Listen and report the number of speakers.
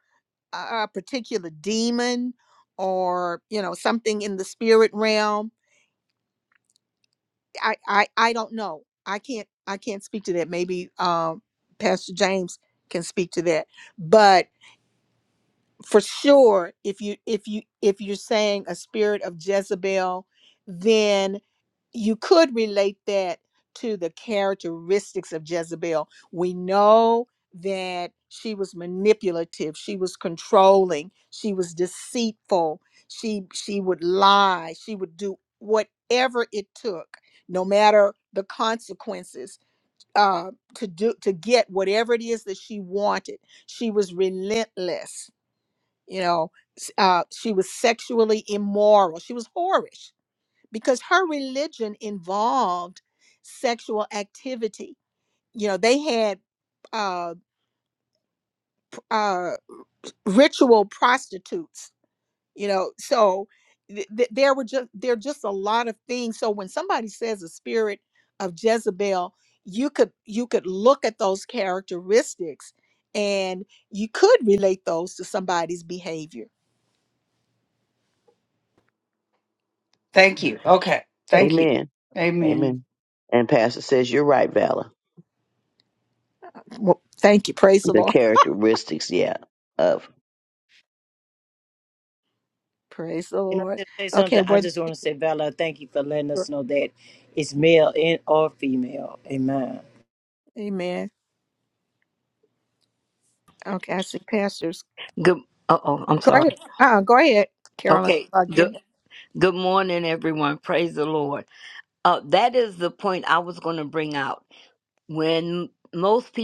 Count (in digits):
5